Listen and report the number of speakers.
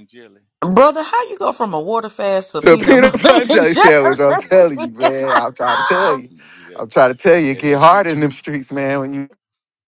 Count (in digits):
3